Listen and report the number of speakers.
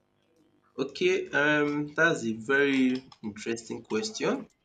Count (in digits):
1